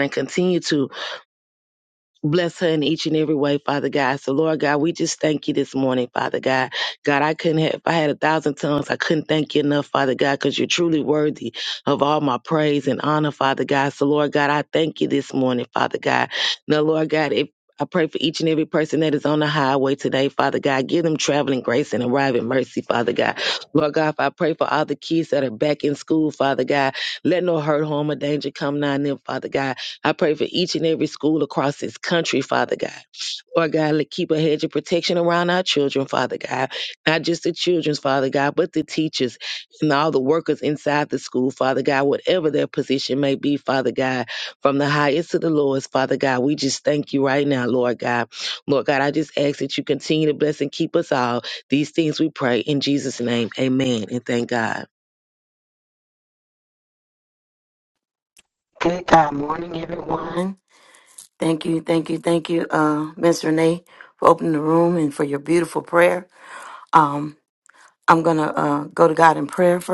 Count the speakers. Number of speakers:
2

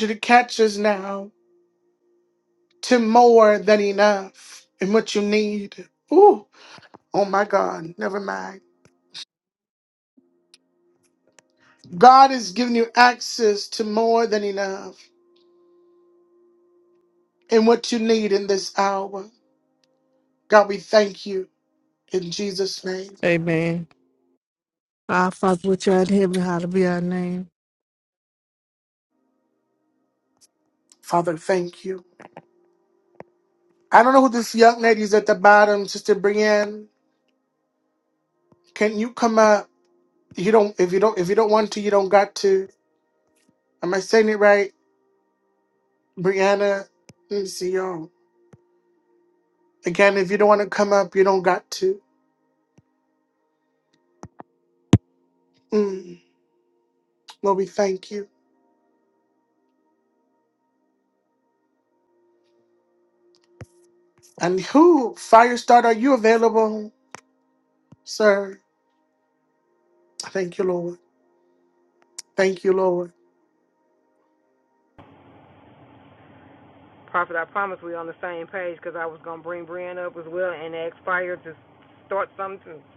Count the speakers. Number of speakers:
3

